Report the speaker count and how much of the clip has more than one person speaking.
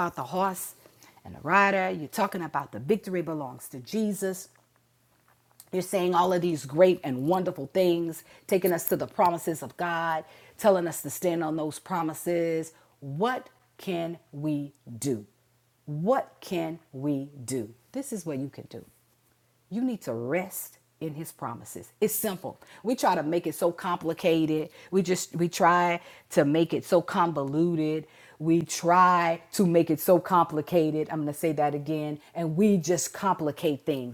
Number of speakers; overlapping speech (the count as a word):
one, no overlap